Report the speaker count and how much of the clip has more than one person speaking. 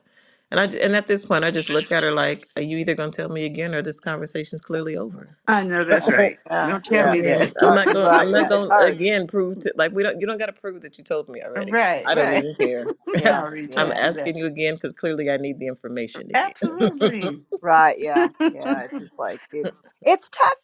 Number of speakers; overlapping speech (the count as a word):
three, about 27%